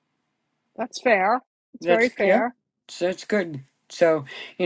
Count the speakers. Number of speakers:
2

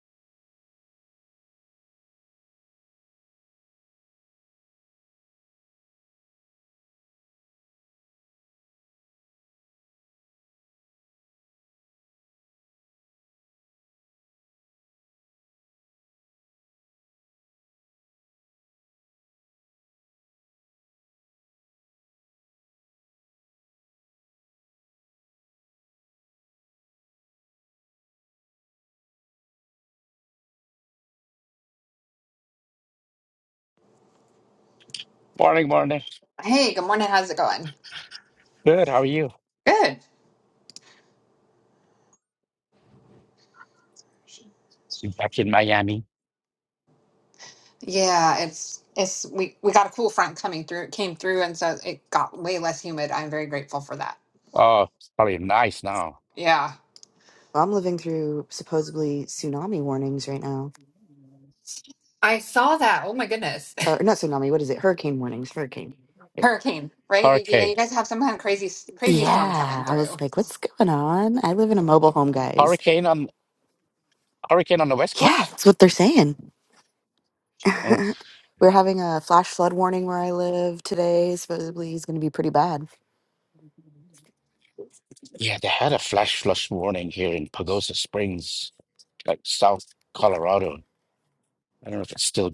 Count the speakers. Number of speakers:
3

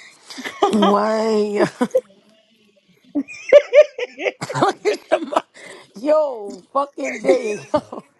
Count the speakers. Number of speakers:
1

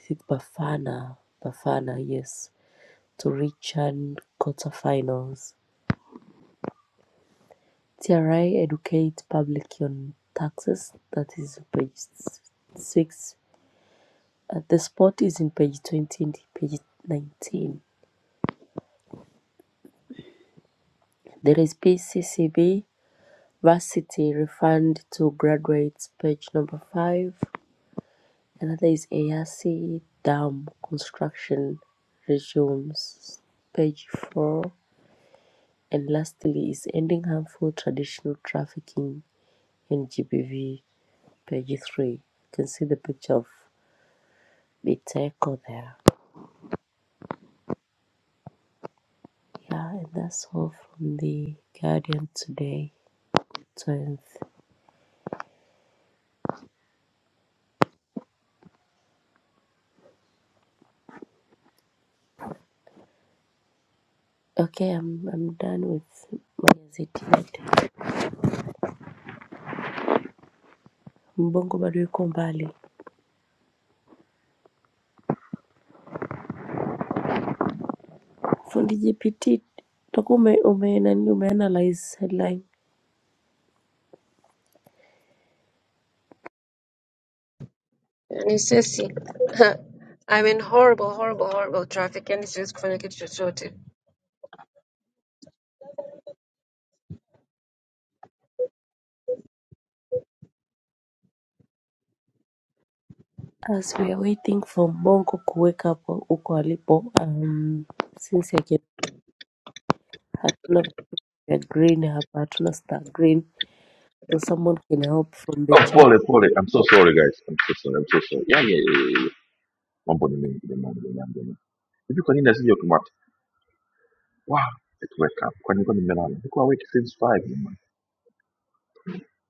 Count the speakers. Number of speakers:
3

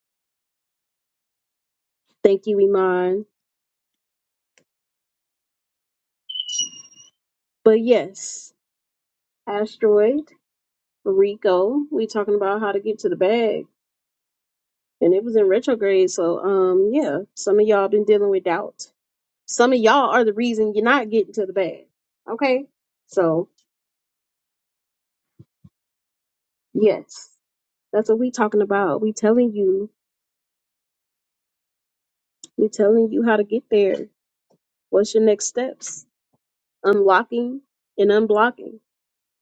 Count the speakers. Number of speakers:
1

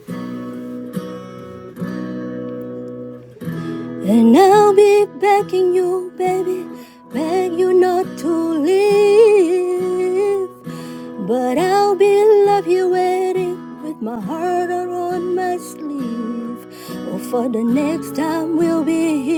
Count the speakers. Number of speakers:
1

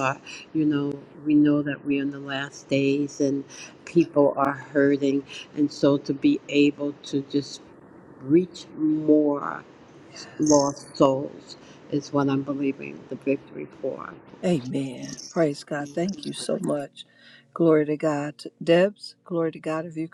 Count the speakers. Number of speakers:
2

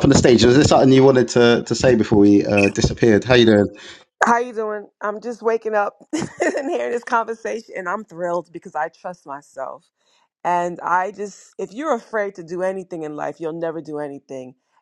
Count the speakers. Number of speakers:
2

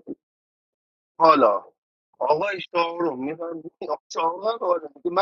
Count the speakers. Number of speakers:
1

